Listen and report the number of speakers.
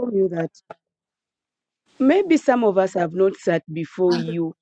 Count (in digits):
1